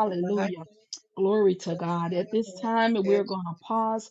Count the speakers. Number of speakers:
one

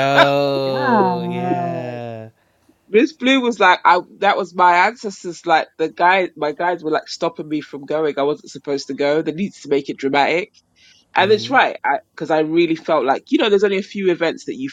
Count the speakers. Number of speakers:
three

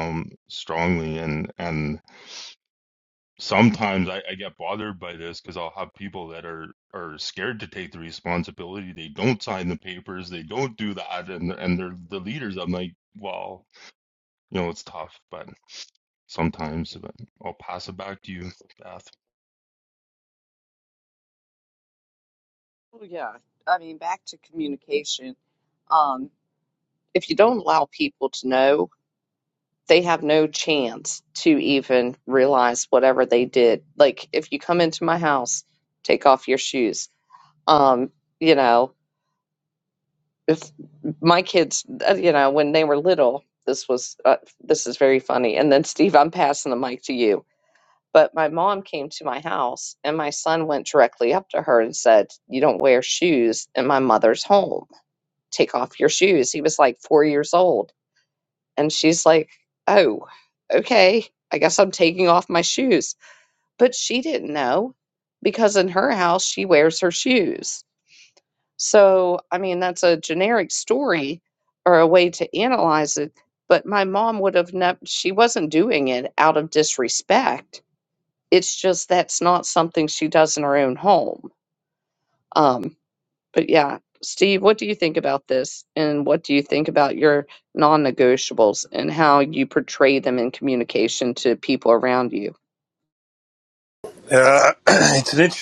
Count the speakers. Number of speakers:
three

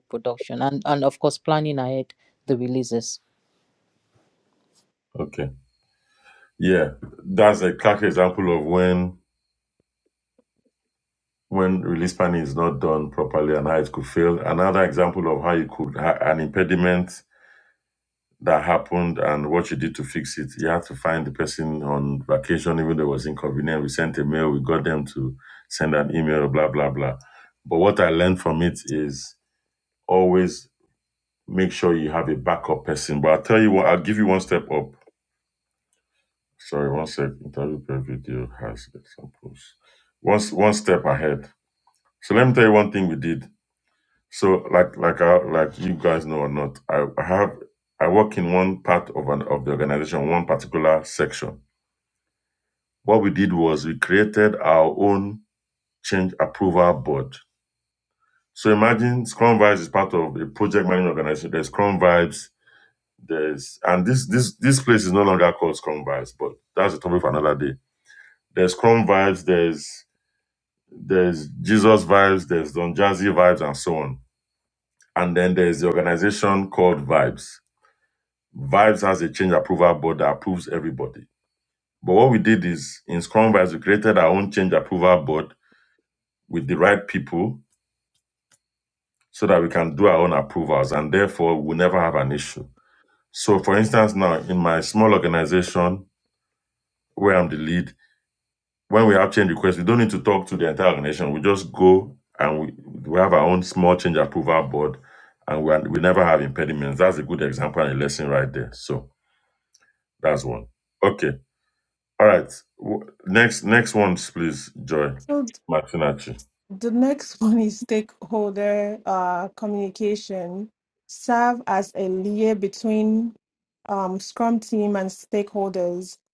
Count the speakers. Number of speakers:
three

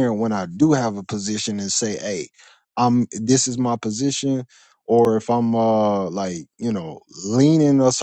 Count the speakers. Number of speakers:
one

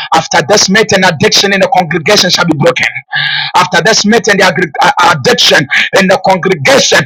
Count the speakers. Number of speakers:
one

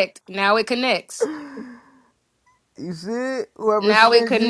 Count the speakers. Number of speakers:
two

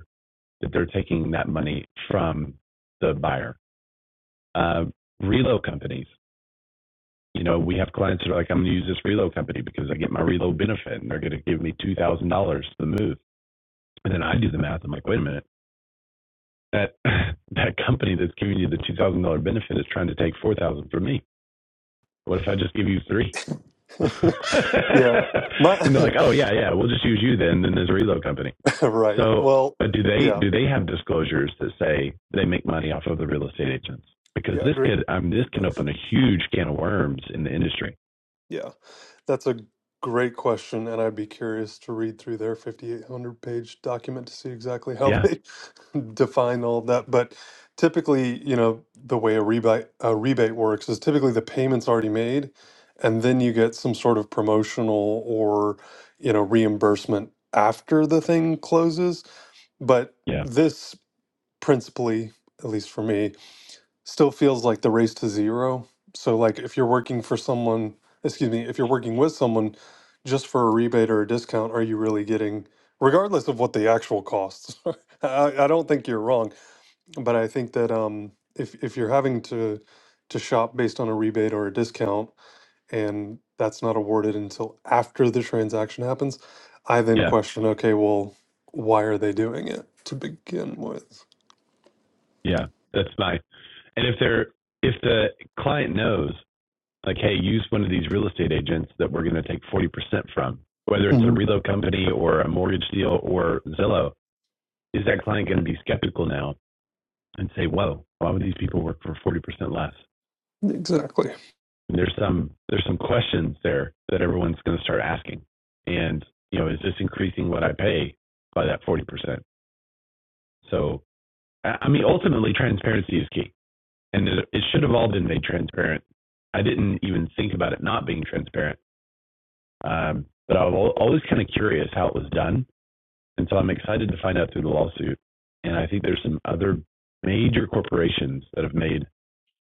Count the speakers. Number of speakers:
two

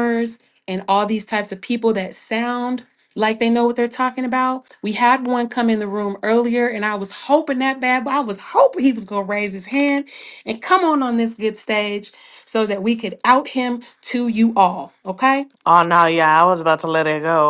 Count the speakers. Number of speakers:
two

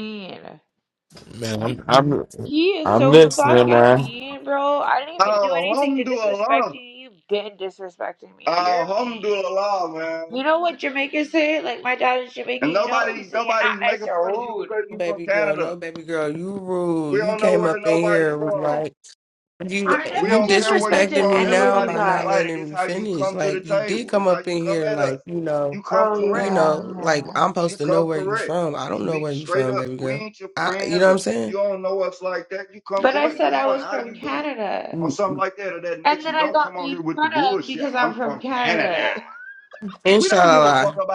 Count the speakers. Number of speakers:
four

